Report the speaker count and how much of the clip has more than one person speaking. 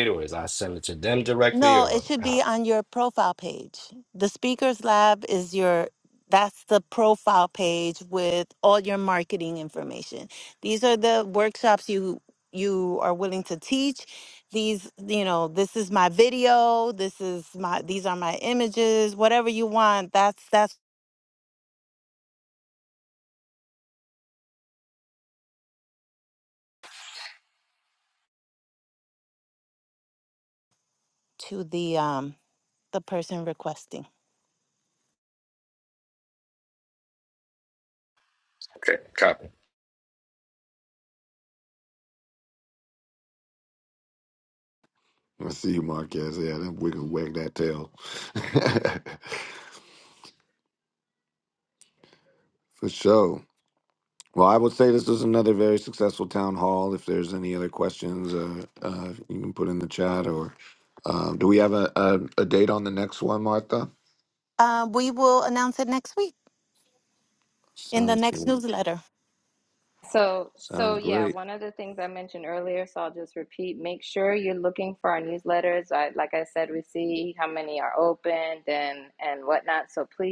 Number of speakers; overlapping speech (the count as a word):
four, about 3%